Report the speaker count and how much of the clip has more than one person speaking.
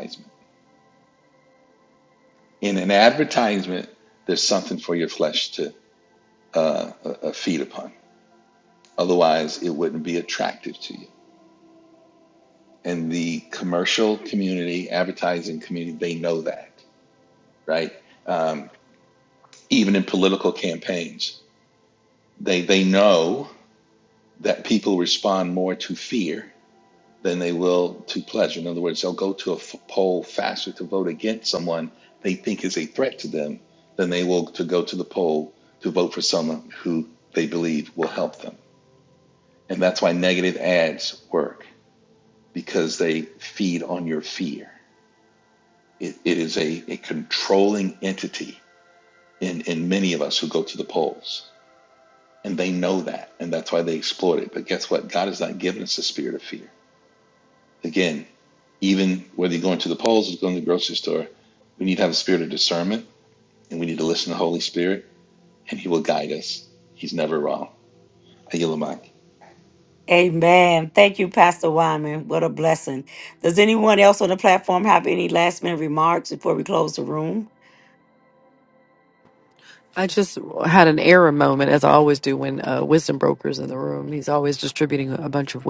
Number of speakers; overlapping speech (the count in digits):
3, no overlap